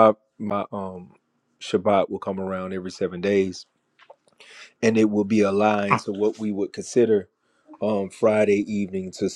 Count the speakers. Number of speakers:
one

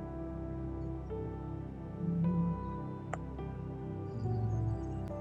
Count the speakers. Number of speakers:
zero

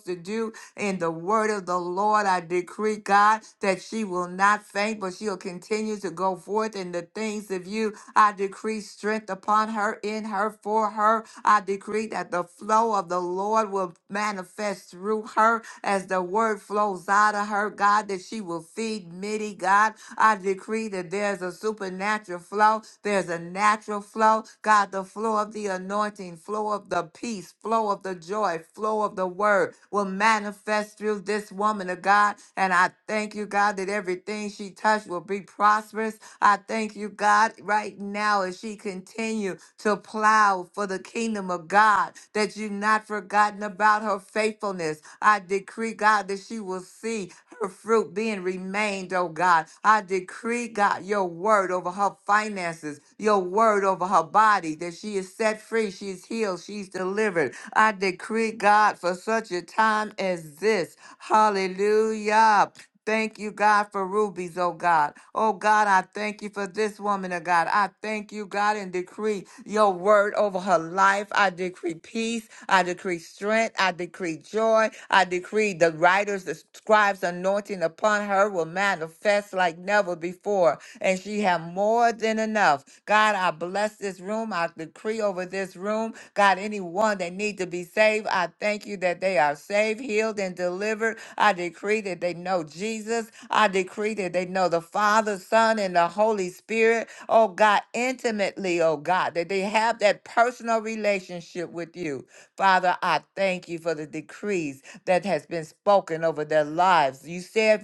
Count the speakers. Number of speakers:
one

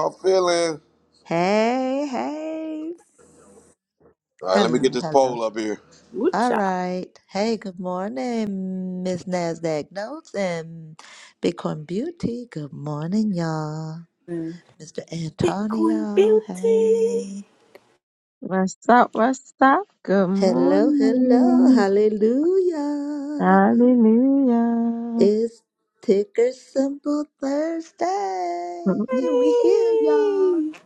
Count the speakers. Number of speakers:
four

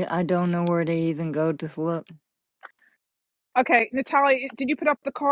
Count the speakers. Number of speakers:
two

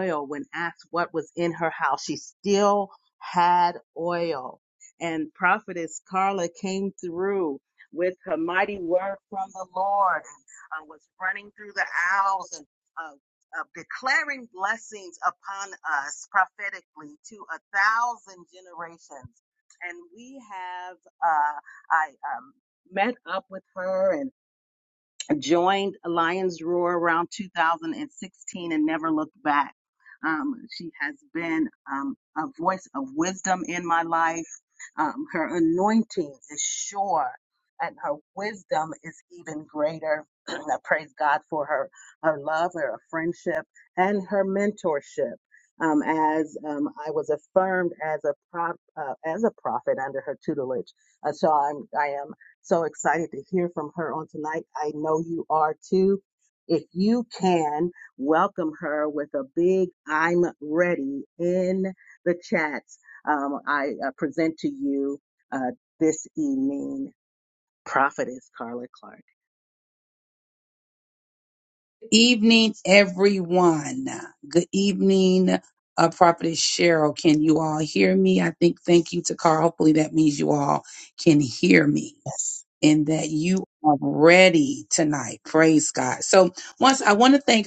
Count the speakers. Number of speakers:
two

